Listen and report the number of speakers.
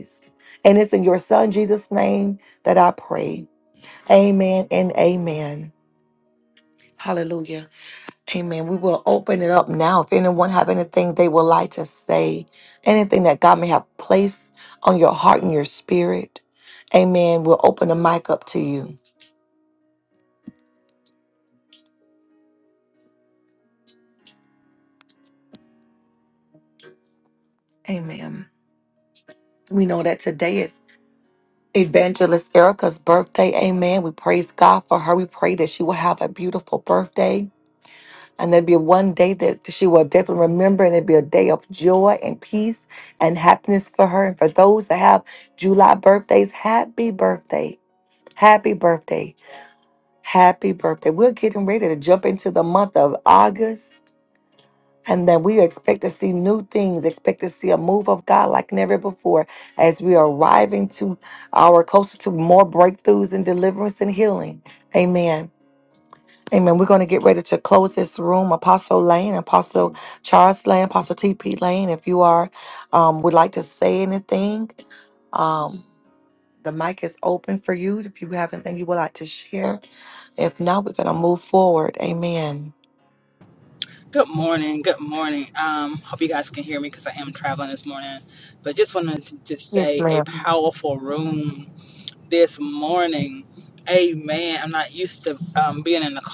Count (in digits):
2